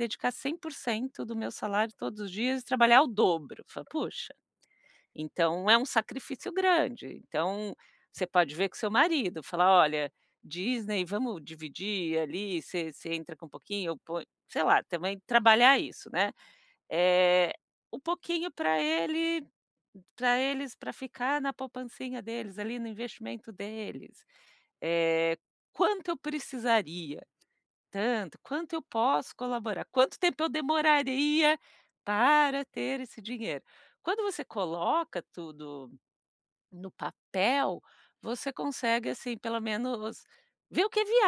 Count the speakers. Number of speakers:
one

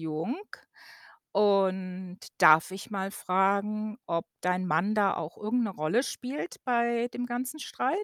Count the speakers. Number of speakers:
one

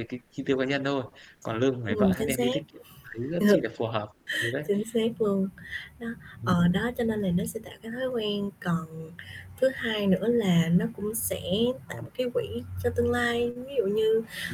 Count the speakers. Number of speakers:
two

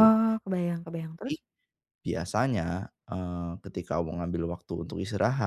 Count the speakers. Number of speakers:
two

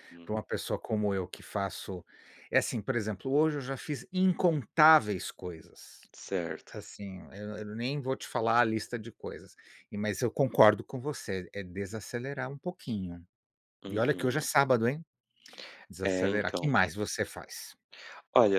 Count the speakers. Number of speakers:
two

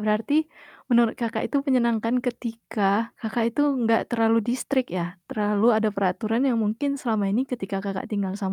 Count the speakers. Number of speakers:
one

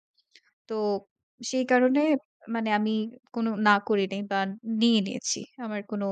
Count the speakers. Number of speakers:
one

